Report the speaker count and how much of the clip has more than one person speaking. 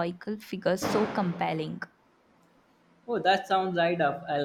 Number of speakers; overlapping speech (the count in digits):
2, no overlap